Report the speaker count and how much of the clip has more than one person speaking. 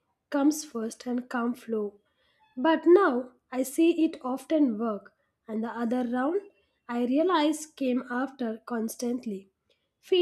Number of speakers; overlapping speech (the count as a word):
one, no overlap